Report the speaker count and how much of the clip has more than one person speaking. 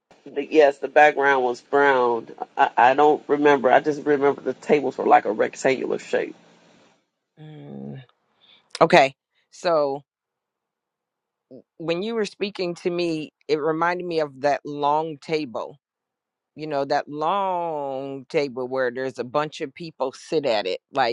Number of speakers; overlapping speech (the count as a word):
two, no overlap